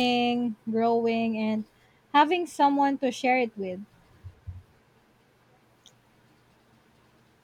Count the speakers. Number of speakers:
one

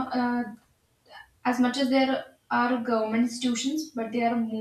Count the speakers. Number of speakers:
one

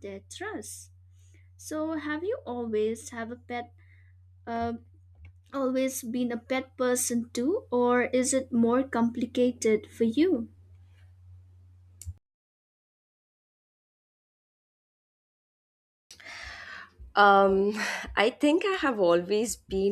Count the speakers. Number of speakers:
two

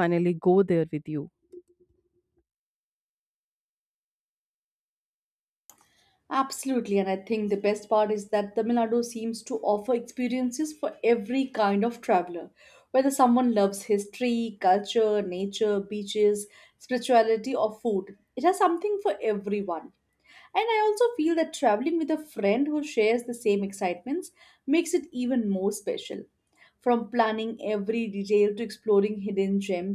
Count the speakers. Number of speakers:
two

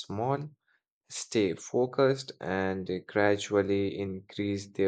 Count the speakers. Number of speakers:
one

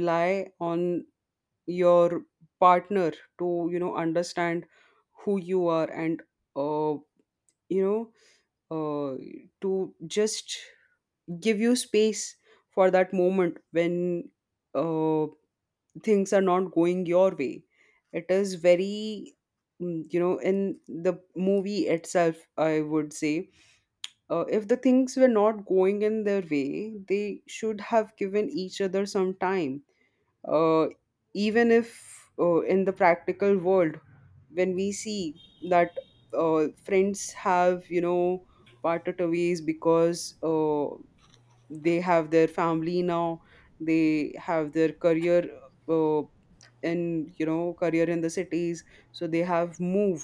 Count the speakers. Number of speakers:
one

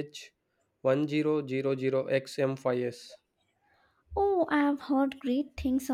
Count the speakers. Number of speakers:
two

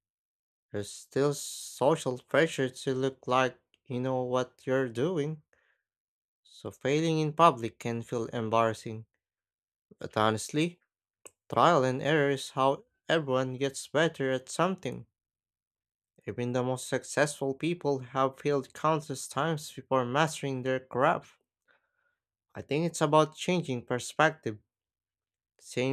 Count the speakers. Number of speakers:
one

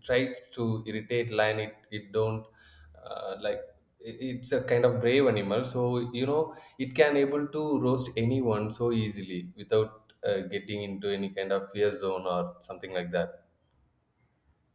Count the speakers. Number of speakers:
one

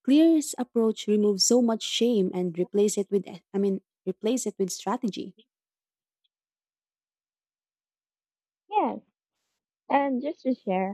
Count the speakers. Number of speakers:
two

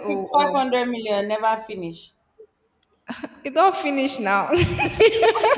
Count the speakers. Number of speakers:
two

